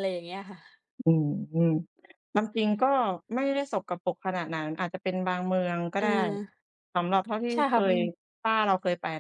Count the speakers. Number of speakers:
2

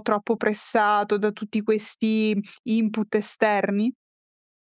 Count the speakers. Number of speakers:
1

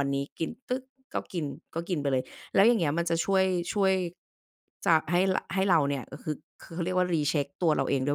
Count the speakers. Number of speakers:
1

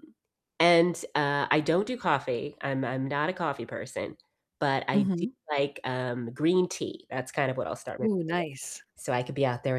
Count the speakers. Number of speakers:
2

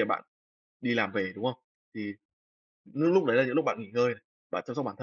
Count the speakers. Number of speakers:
1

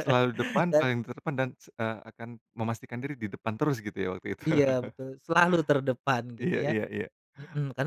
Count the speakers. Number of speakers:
2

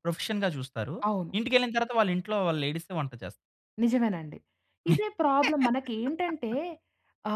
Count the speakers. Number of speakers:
2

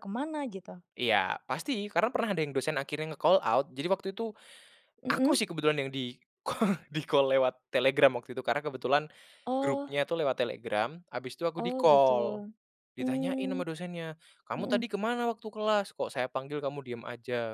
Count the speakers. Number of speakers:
2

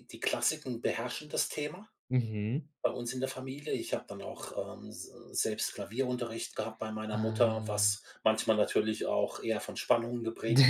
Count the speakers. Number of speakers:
2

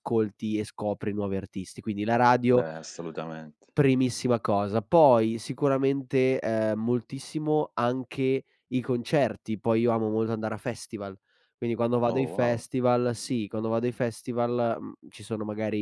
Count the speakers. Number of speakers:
2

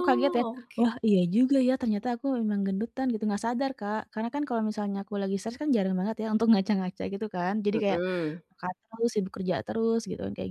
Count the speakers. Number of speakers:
2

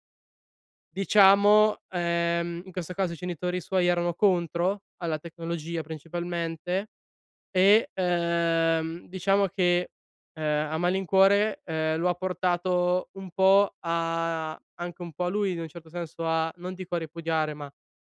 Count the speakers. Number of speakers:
1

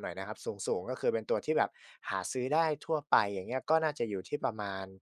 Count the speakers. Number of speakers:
1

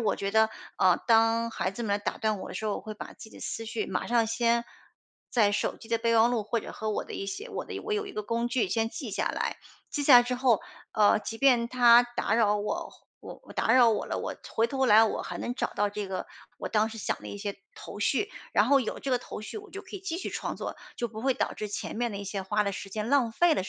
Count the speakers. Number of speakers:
1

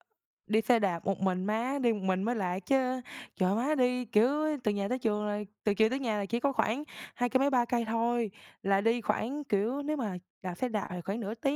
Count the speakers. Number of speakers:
1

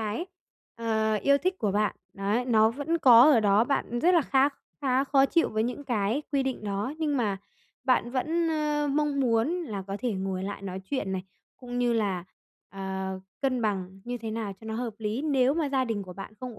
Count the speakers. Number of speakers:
1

